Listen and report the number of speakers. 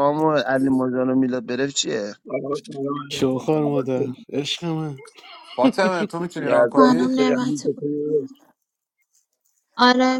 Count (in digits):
5